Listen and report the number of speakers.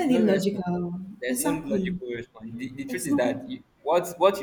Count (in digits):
2